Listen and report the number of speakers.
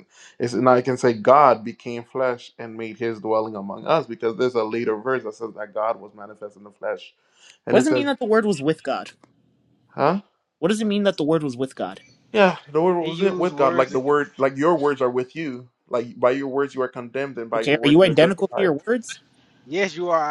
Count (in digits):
3